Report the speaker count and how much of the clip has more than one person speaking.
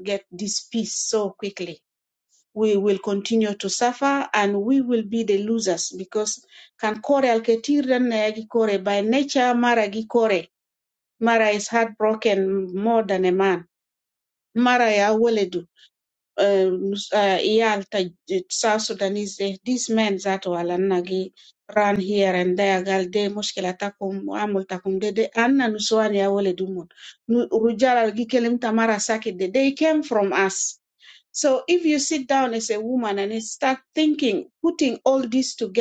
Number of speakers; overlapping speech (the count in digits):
1, no overlap